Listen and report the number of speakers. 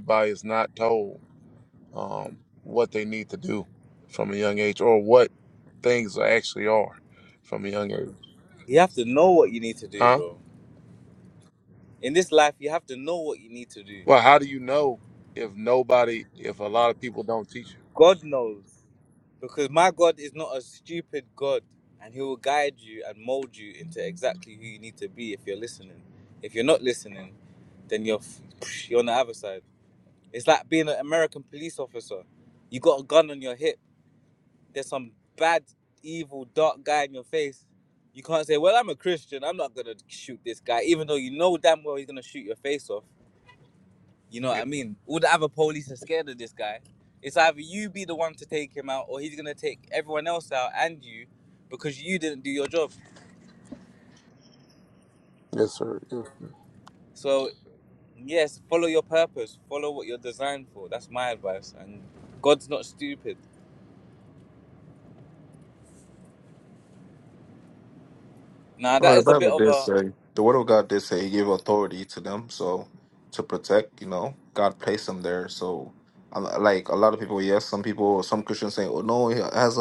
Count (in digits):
3